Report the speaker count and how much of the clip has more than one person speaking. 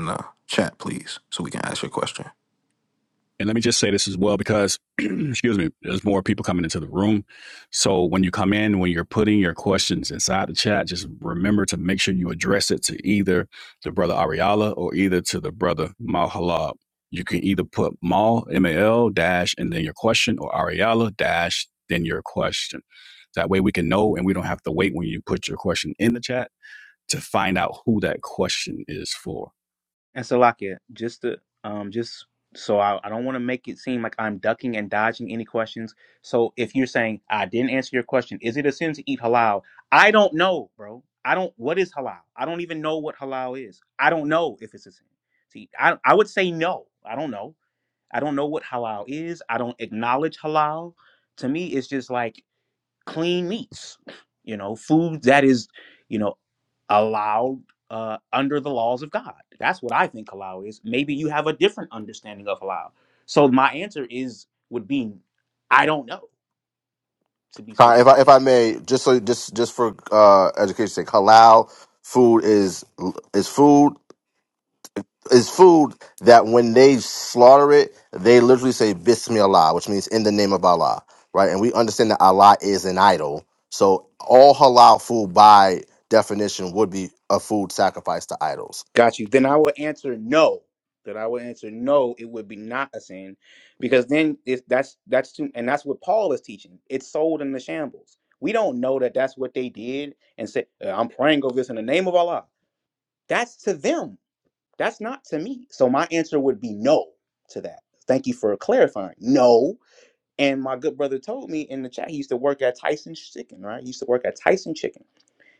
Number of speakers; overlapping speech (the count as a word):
four, under 1%